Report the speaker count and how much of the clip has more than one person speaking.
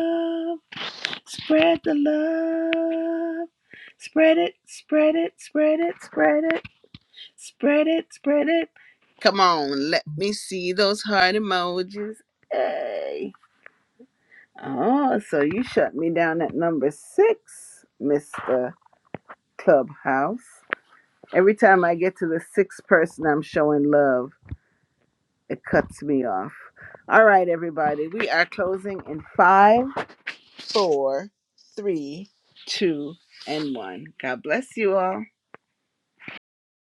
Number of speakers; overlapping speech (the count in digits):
1, no overlap